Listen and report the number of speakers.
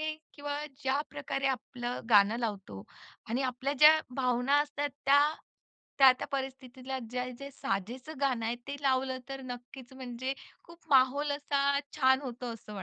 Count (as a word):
one